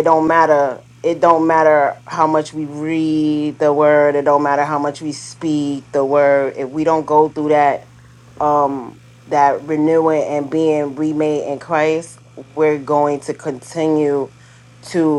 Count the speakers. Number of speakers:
1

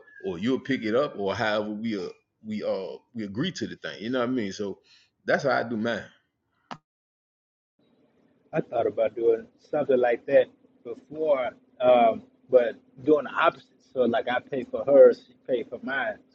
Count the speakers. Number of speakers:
2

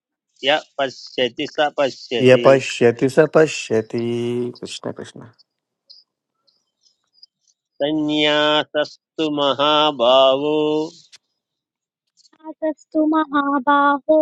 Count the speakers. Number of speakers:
3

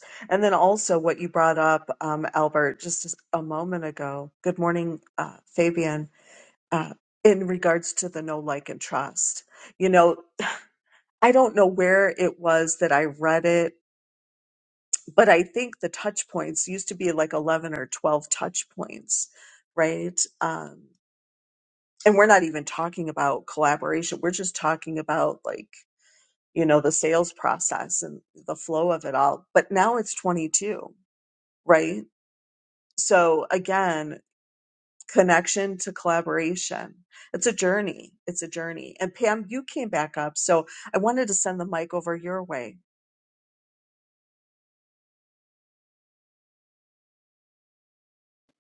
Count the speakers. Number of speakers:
1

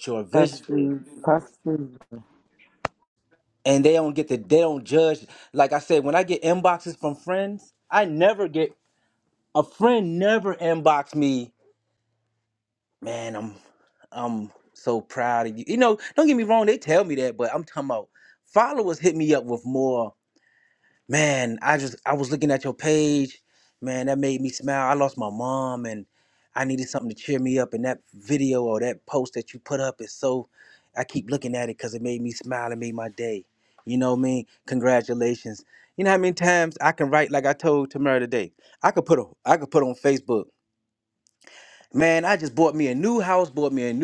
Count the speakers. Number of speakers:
2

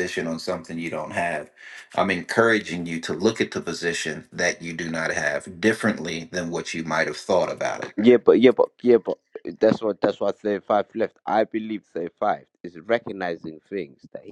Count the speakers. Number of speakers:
2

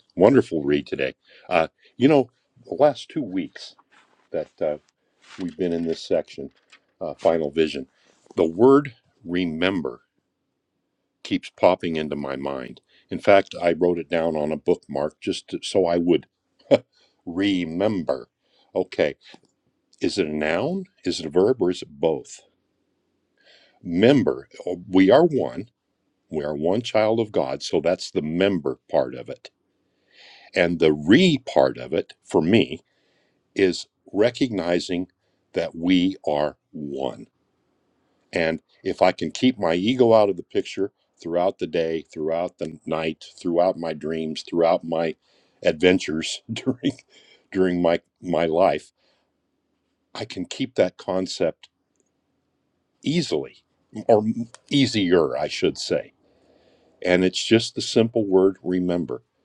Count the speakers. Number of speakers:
1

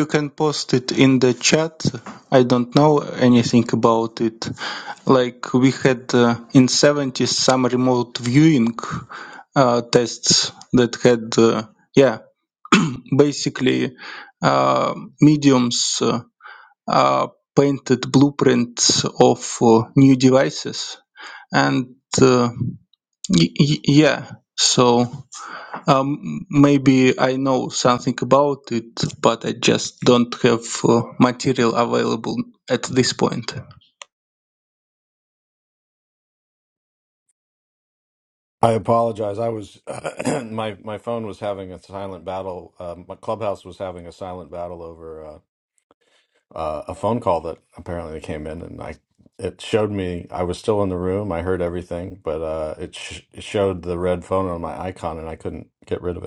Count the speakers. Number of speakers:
2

